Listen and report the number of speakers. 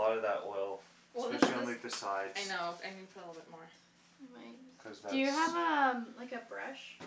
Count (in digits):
3